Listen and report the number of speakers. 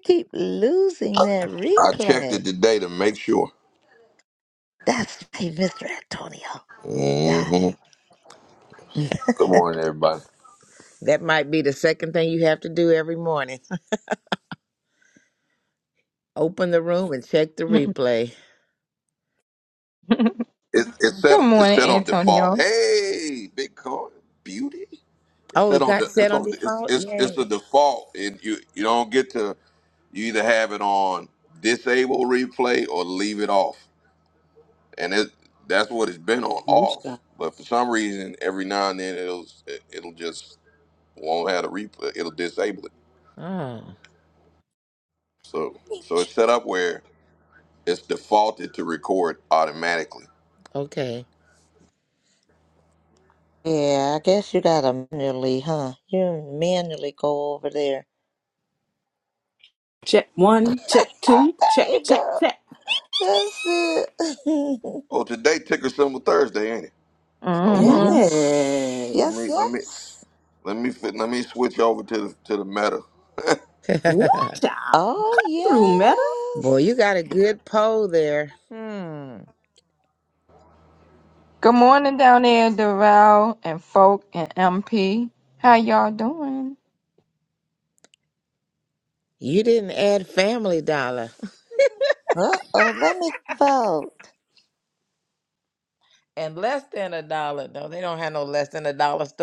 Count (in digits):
5